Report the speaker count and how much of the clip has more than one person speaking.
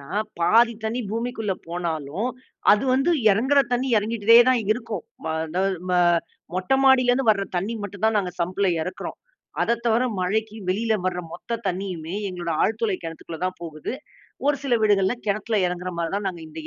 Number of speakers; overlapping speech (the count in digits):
1, no overlap